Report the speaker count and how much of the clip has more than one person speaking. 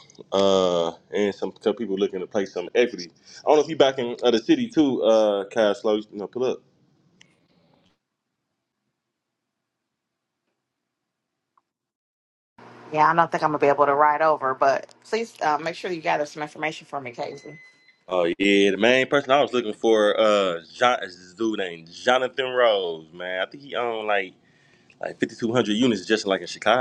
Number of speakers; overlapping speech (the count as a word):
two, no overlap